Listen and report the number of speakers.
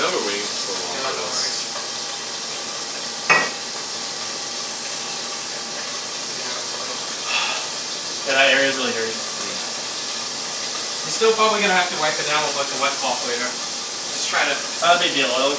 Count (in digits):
3